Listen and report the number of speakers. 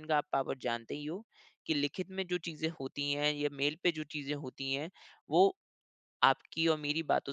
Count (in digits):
1